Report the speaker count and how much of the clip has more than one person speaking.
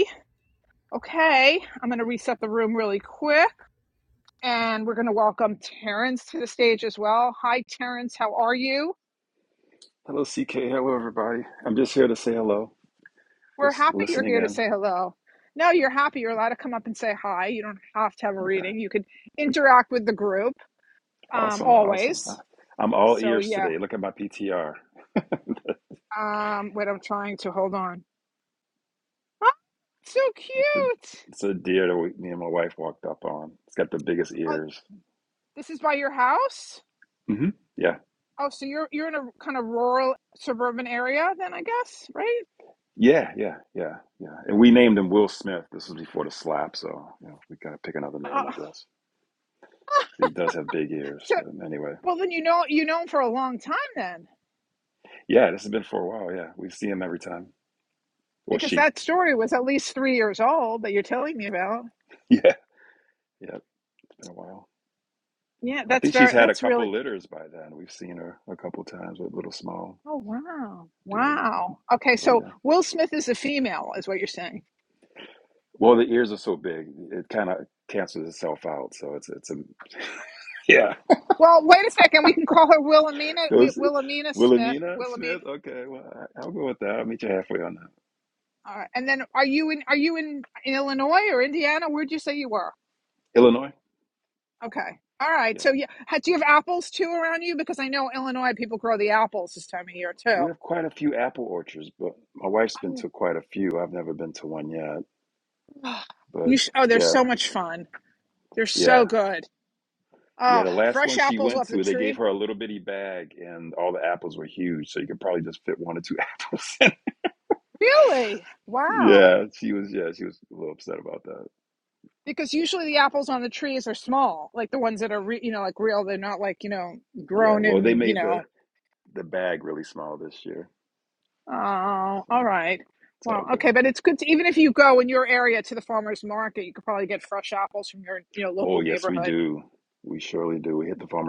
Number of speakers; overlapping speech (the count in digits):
2, about 9%